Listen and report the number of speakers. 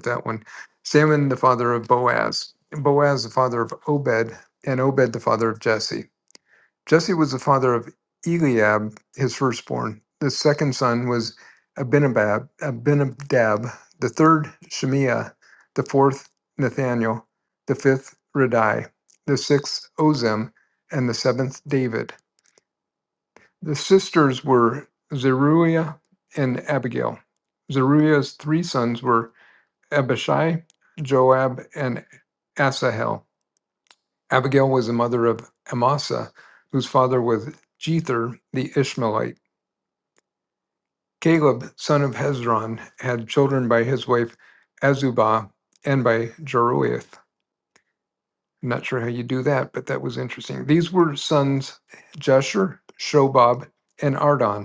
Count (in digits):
1